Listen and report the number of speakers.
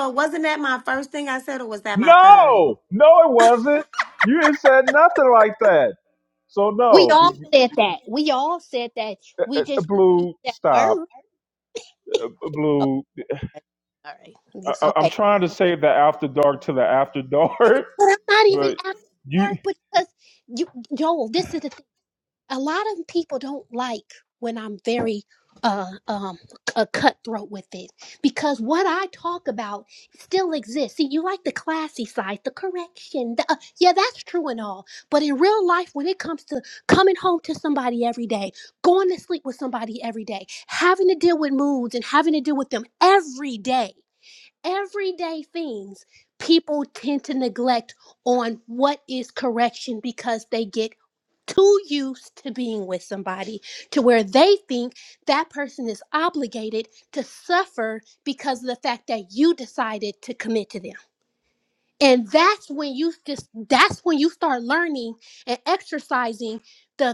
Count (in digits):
3